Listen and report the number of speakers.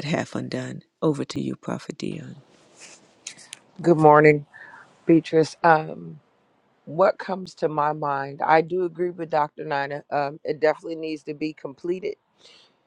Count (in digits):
2